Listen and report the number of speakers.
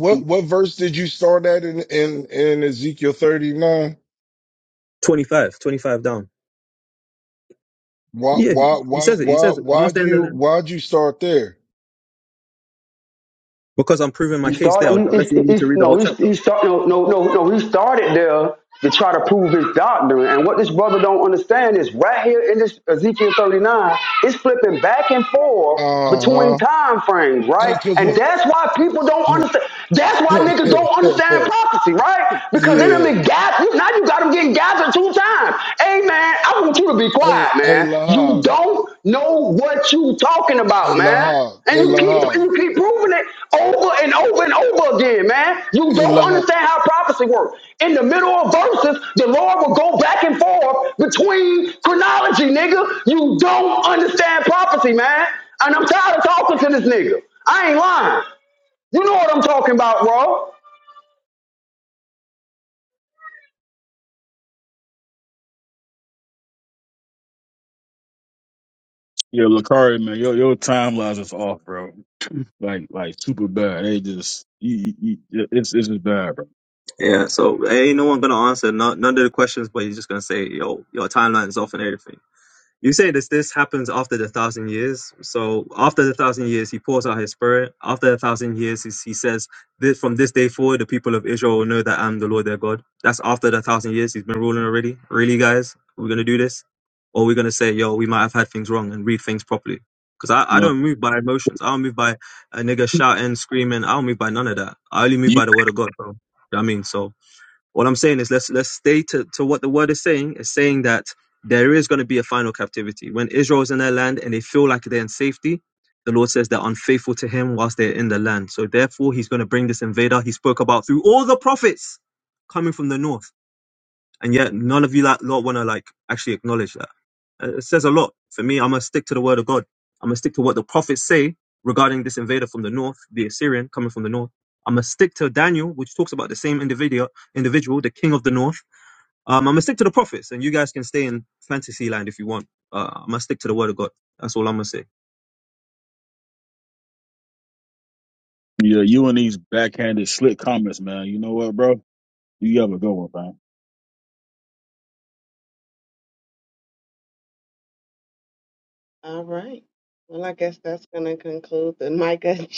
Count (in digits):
5